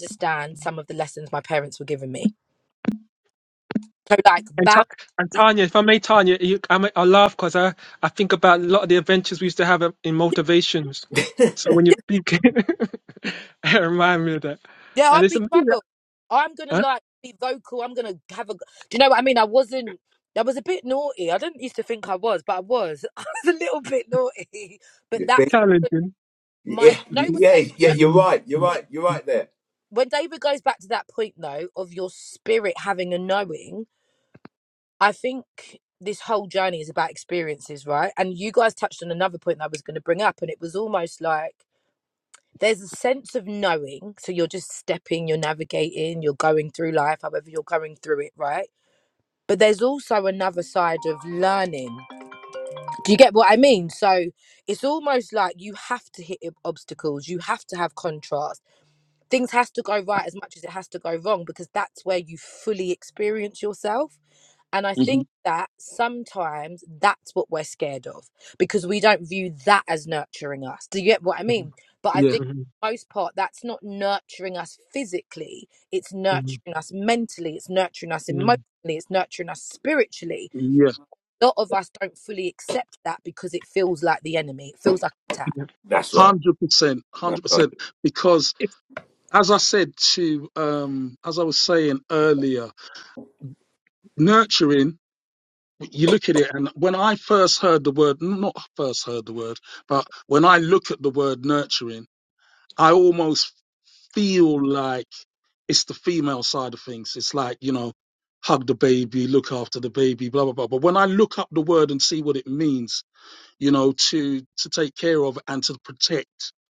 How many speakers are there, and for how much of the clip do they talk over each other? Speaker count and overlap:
4, about 4%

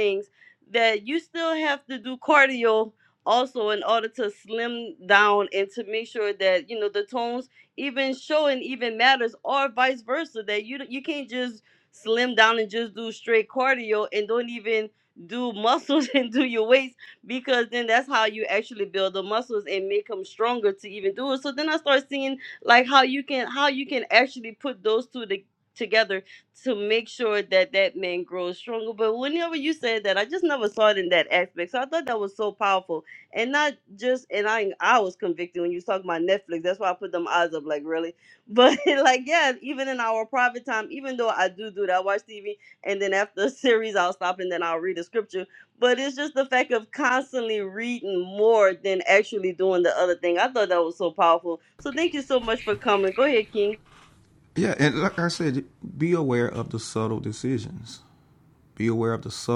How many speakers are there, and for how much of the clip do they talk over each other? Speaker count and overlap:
2, no overlap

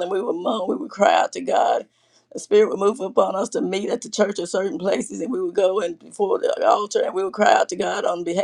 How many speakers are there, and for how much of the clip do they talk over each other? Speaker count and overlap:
1, no overlap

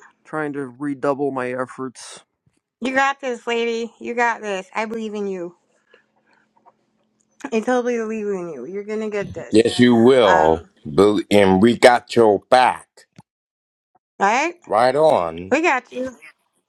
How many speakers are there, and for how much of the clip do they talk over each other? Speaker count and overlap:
3, about 2%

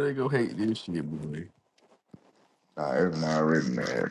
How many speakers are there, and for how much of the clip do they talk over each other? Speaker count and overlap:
2, no overlap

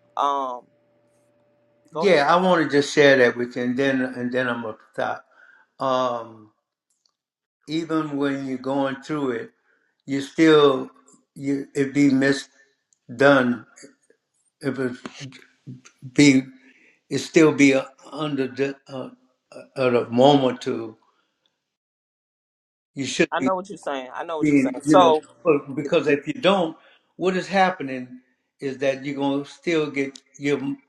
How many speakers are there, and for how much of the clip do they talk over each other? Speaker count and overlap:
2, about 4%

